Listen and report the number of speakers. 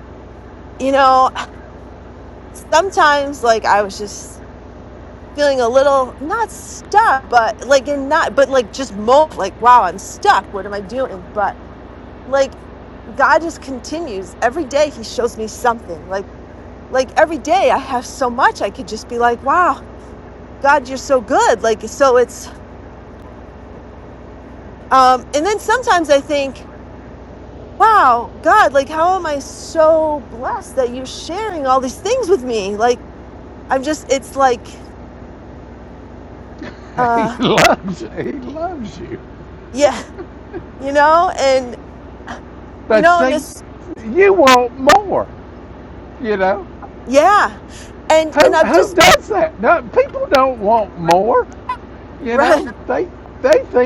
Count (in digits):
2